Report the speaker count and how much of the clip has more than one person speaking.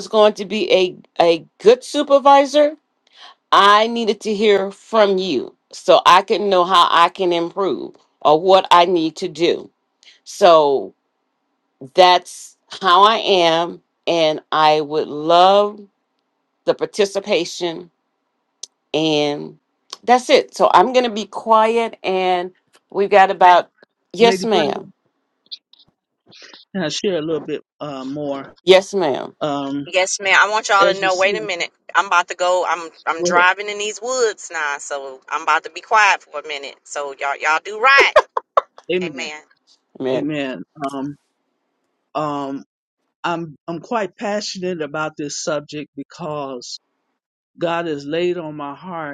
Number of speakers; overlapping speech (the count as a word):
three, about 4%